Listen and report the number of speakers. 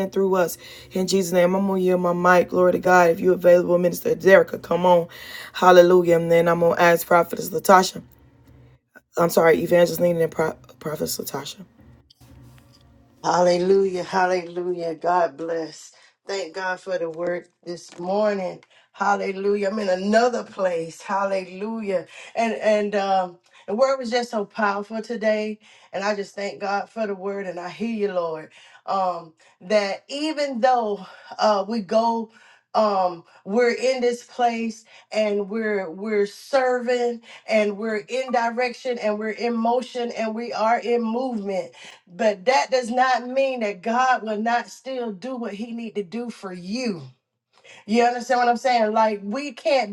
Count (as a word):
two